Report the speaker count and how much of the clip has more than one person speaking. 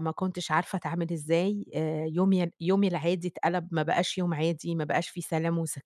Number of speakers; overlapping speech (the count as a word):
one, no overlap